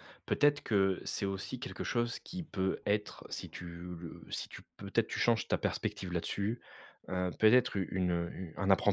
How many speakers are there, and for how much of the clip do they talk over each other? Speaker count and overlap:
1, no overlap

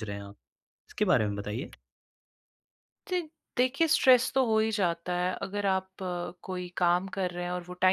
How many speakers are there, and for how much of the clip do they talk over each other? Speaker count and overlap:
2, no overlap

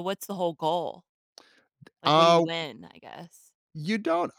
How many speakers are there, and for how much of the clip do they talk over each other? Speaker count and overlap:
2, about 10%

